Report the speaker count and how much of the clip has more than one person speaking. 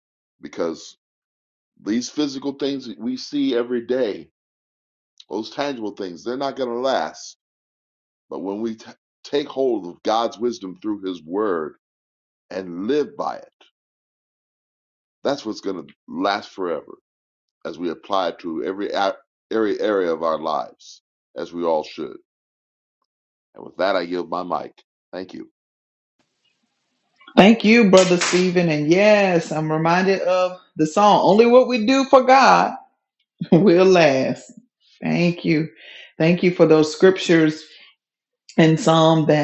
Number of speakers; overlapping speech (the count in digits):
2, no overlap